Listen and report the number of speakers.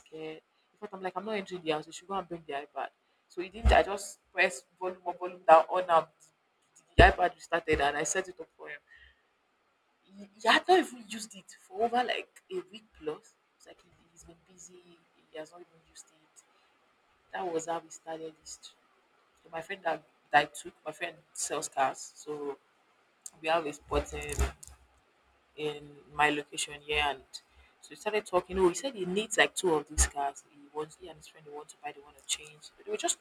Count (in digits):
1